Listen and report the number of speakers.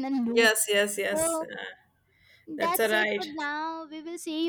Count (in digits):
2